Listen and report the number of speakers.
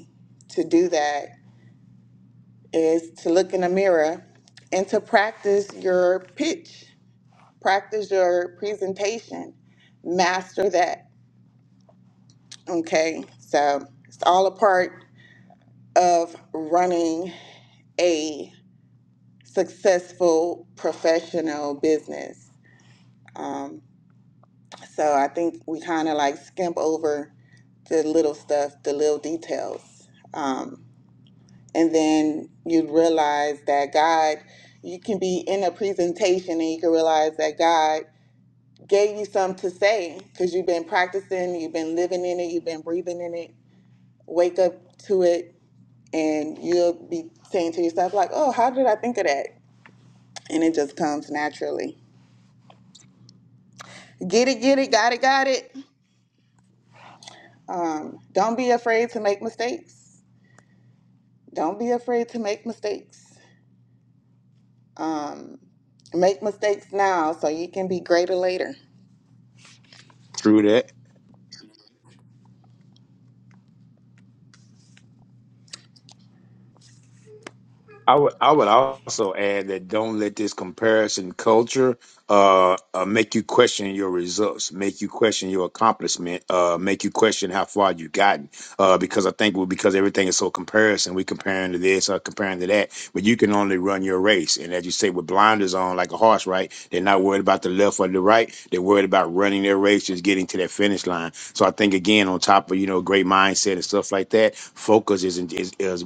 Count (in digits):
2